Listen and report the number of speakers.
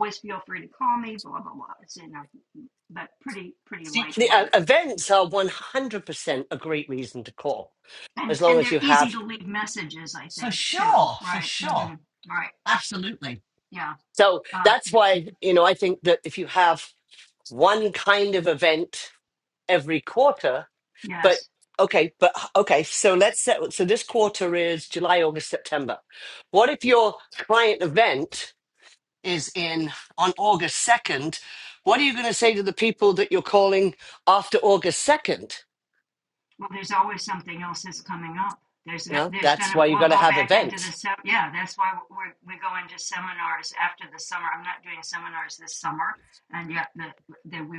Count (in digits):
2